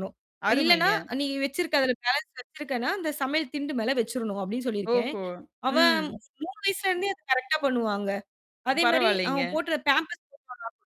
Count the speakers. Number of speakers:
two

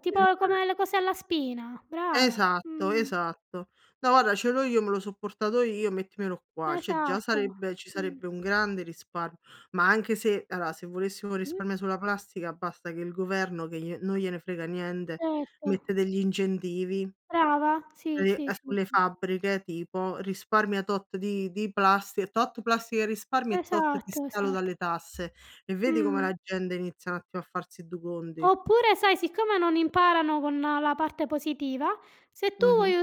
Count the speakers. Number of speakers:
two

